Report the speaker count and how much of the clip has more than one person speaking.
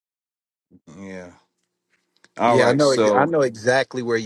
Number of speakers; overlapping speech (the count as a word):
two, about 20%